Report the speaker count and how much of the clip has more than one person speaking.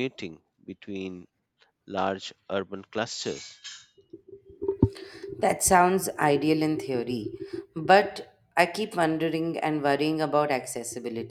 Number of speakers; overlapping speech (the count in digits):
2, no overlap